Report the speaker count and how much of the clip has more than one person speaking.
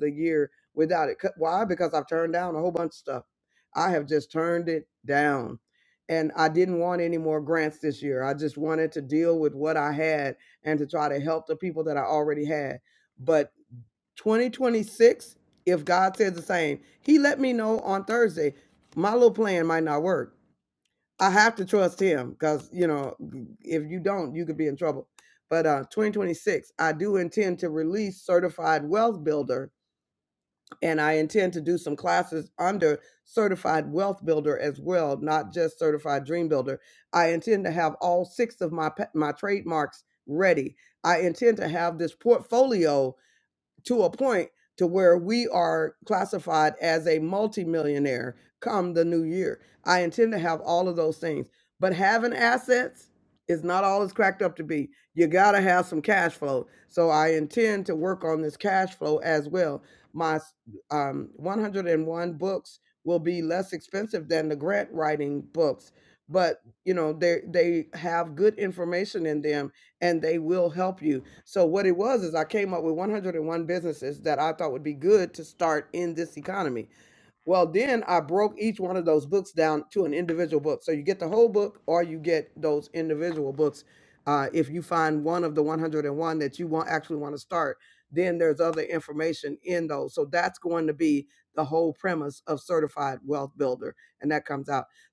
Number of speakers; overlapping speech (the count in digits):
1, no overlap